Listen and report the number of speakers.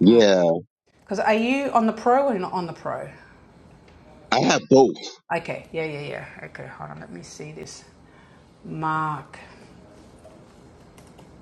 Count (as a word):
two